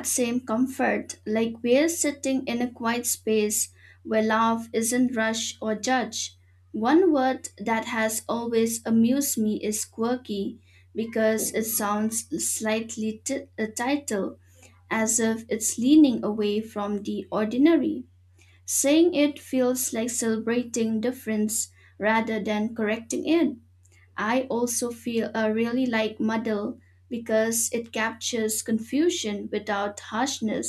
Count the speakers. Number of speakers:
1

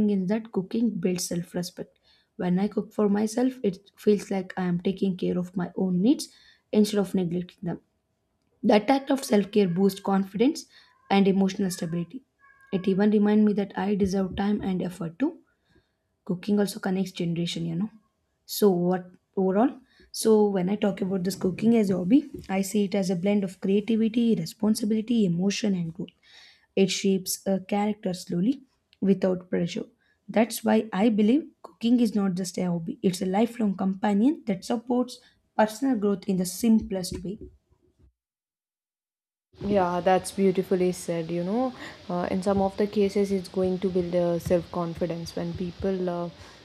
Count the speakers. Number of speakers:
2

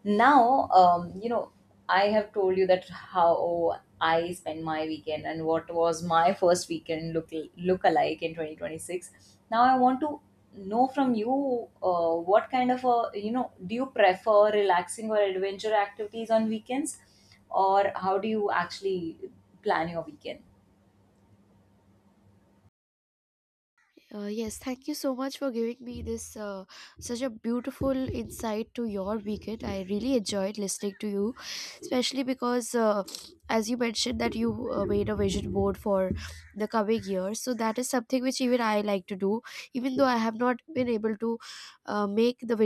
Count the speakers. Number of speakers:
2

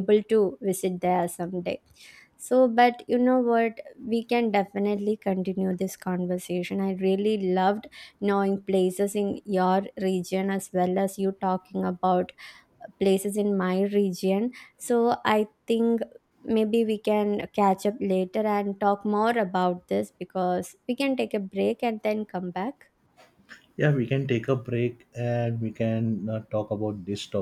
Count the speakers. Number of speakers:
2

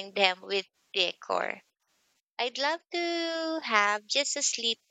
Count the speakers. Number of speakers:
1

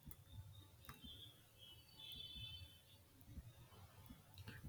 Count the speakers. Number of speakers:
0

